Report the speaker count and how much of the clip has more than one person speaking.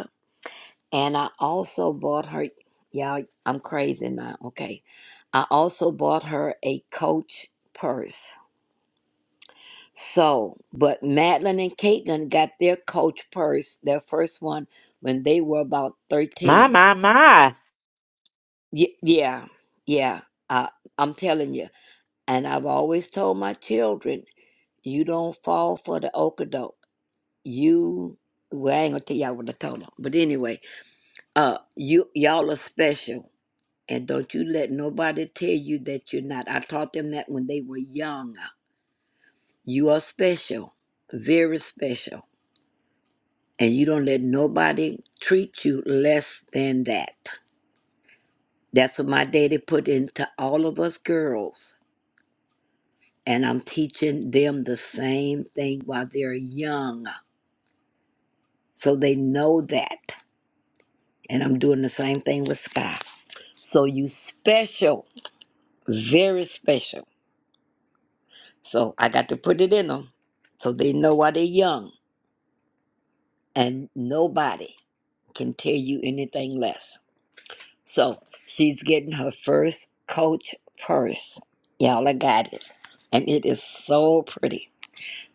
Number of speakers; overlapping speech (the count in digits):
2, under 1%